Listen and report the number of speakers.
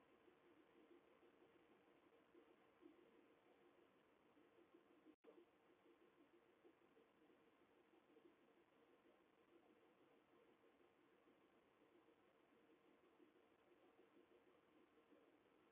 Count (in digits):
0